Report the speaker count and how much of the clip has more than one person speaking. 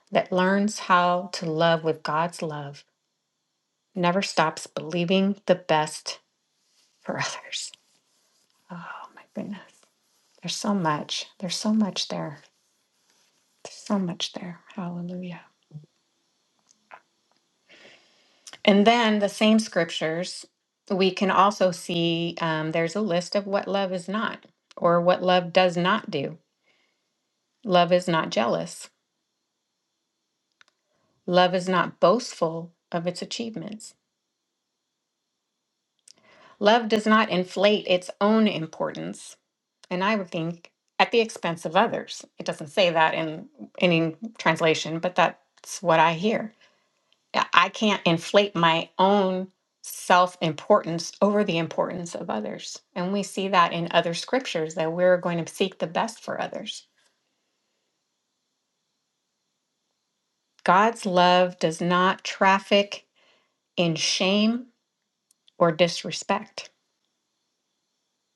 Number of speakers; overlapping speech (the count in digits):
1, no overlap